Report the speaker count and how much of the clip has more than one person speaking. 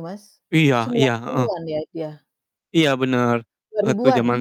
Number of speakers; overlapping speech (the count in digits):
2, about 24%